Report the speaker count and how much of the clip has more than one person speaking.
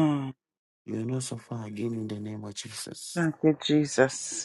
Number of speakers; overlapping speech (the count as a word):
two, no overlap